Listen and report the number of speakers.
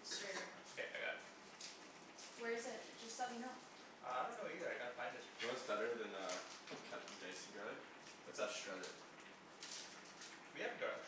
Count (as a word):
three